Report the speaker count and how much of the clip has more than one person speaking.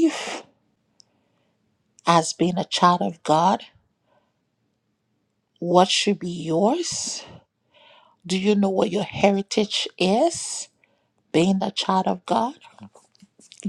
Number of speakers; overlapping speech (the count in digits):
1, no overlap